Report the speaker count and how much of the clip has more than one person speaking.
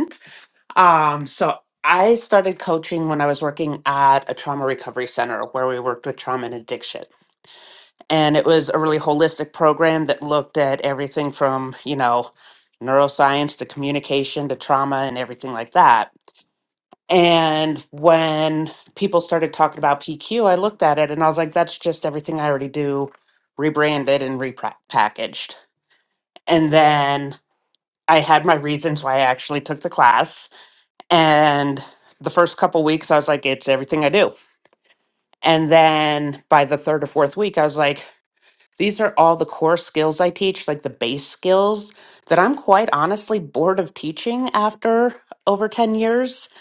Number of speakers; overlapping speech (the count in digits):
1, no overlap